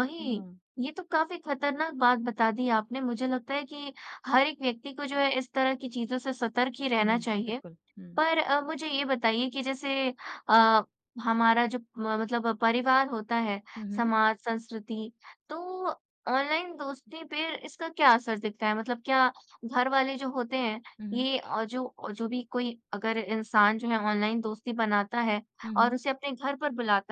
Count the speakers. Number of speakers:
two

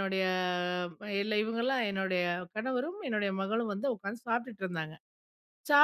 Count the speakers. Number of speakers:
one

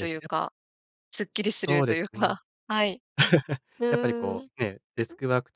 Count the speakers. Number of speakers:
two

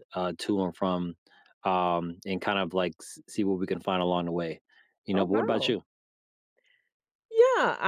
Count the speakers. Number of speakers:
two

